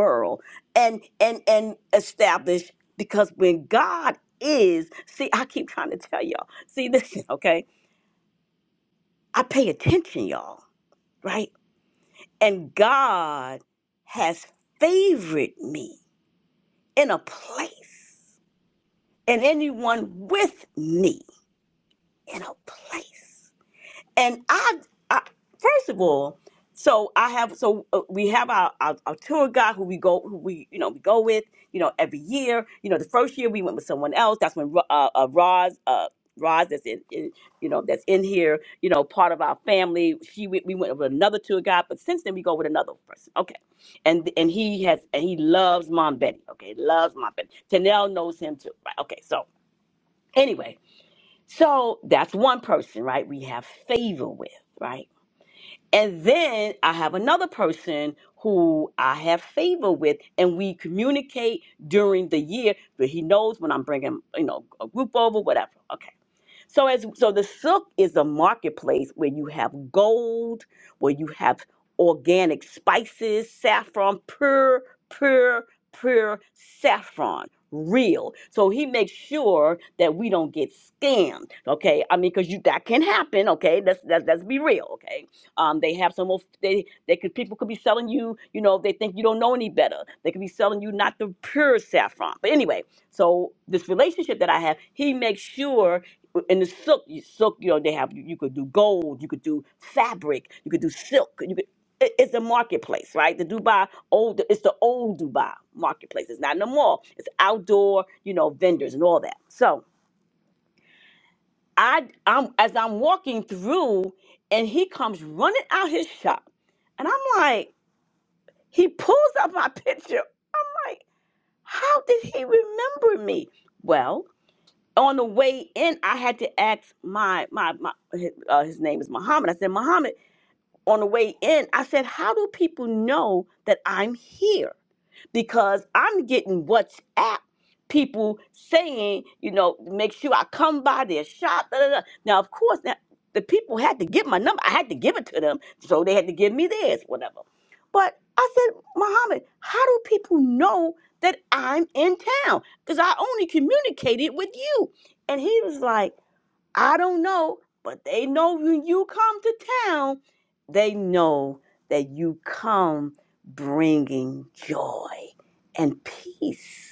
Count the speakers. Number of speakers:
1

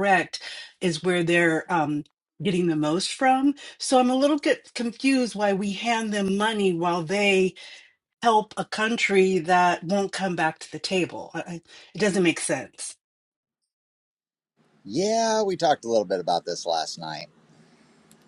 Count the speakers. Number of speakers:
2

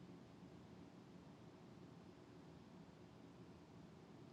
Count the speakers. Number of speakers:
0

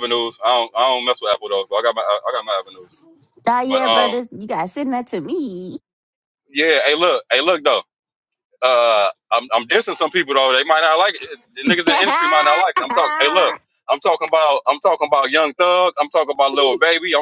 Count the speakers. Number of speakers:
2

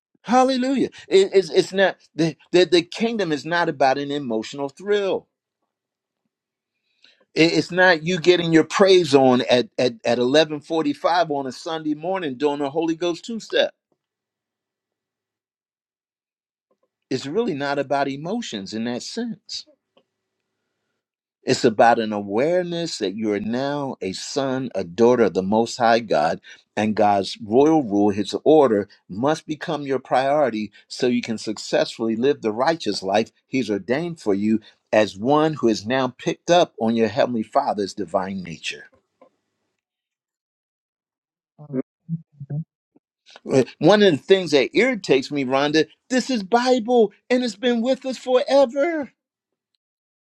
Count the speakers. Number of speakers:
1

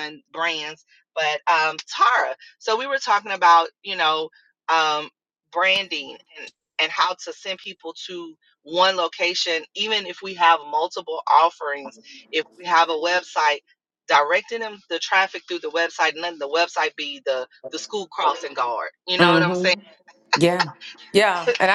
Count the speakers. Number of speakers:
2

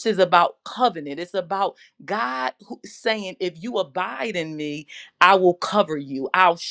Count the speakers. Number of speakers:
1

